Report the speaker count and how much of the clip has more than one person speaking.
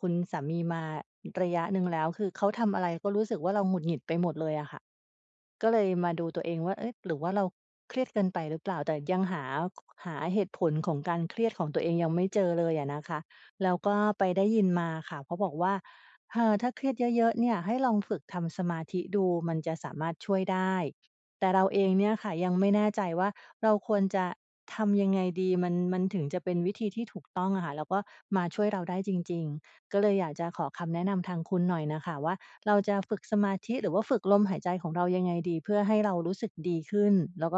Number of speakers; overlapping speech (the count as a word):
one, no overlap